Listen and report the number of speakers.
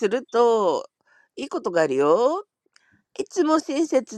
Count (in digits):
1